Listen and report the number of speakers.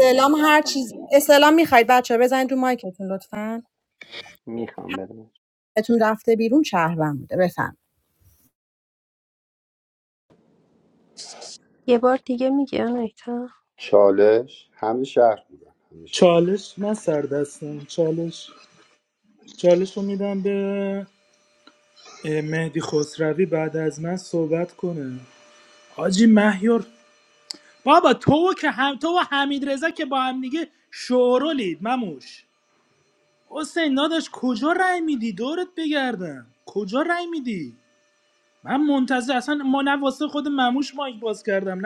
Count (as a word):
five